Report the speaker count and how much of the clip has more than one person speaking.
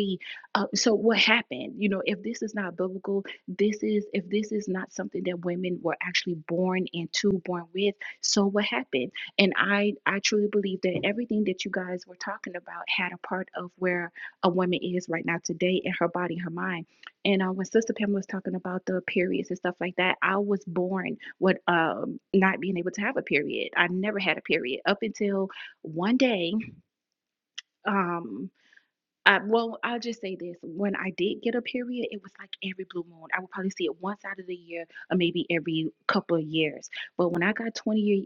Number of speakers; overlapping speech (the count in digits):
1, no overlap